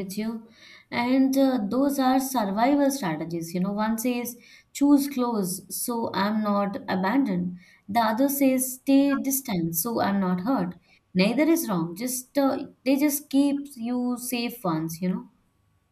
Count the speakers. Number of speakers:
1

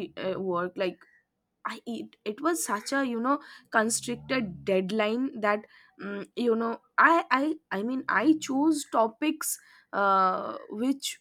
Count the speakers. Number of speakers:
1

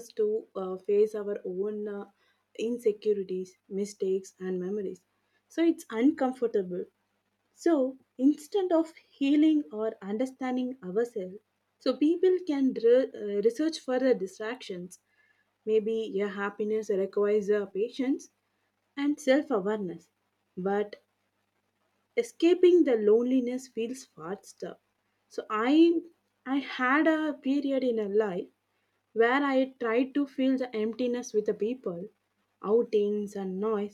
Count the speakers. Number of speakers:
1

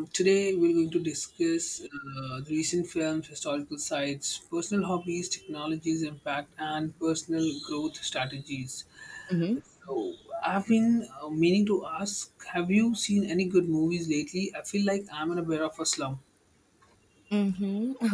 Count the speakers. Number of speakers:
2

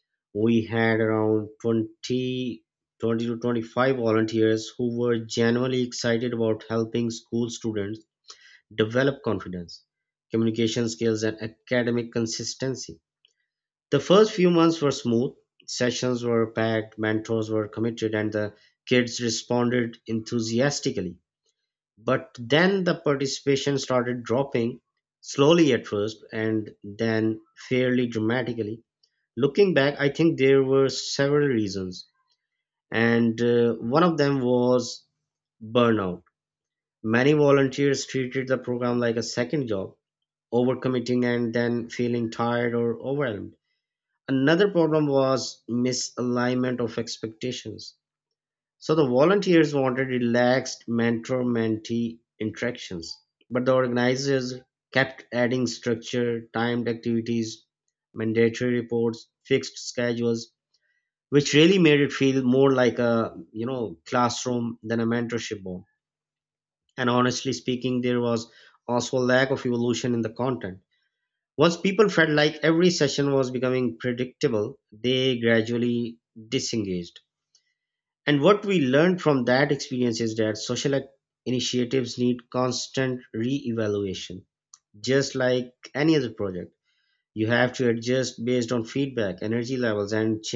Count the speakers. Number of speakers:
1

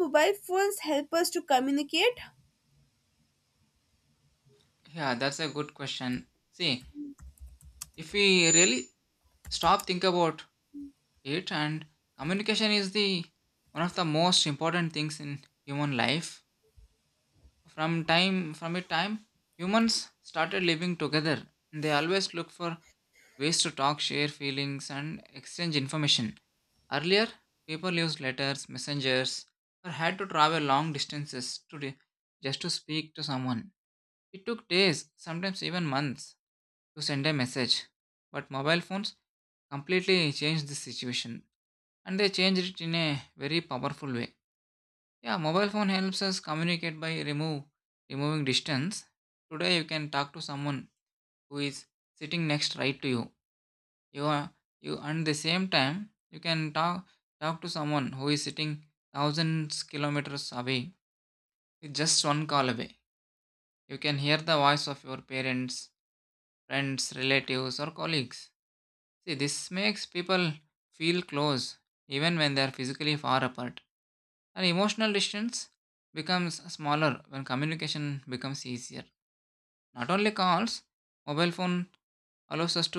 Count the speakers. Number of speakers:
2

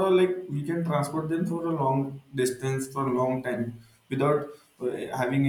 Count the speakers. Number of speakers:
1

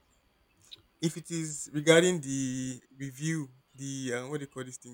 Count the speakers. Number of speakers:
1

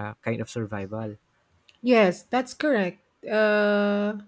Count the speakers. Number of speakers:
2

